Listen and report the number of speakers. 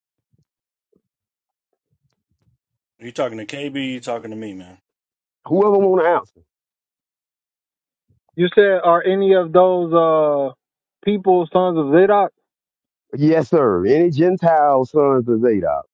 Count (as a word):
three